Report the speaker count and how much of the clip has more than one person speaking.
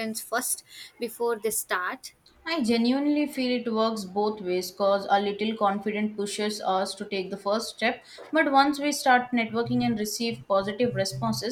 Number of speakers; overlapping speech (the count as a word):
two, no overlap